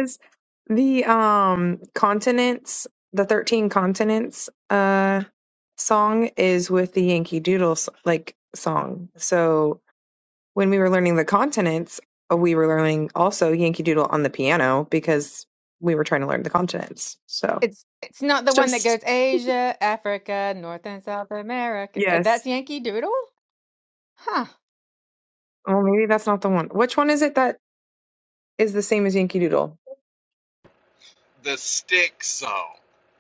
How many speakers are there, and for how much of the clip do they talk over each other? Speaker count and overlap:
3, about 2%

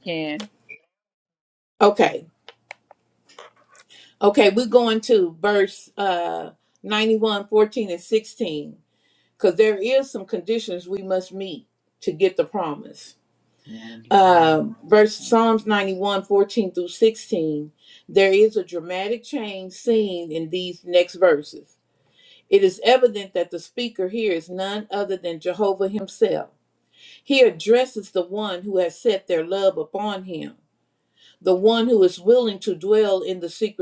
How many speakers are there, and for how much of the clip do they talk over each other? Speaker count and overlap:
2, about 3%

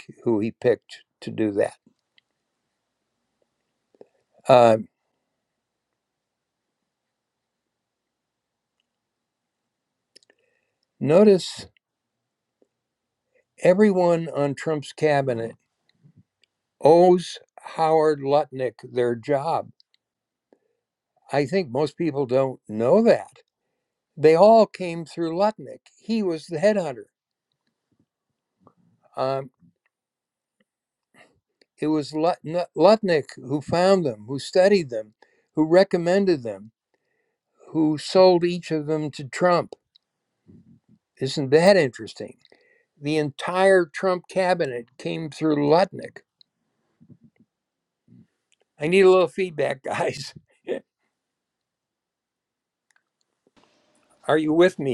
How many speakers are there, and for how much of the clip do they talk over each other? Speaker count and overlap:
1, no overlap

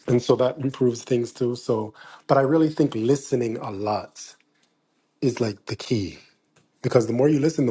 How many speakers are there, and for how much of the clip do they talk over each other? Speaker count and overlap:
1, no overlap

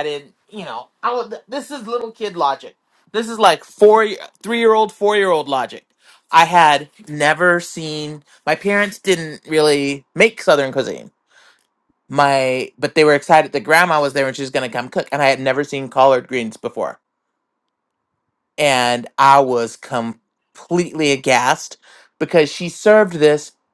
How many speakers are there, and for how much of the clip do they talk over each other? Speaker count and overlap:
1, no overlap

